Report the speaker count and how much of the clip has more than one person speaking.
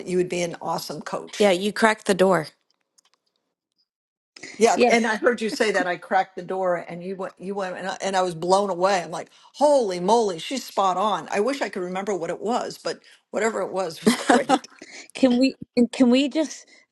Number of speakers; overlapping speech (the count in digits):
3, about 3%